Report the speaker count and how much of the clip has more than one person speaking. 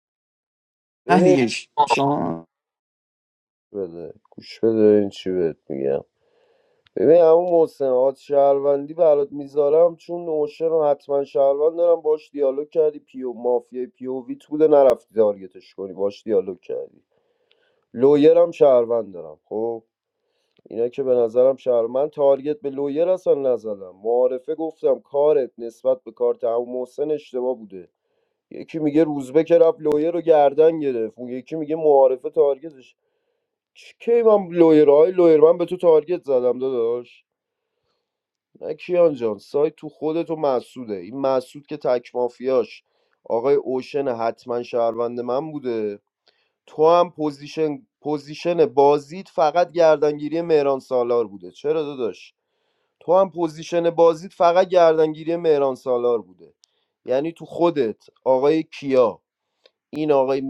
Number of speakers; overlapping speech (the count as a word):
two, under 1%